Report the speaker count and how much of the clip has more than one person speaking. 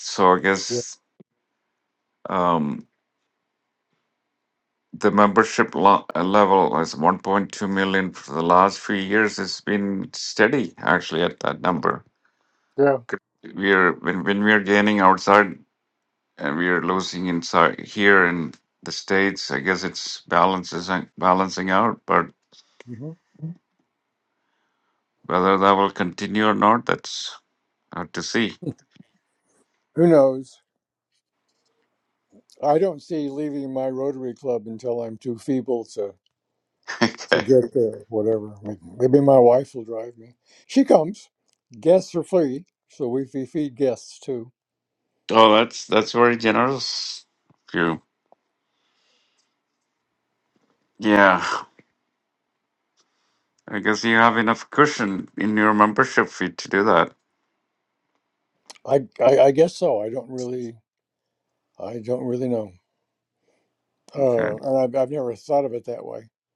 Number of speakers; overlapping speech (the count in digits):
2, about 1%